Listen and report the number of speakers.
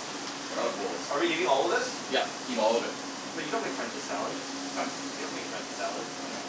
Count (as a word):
two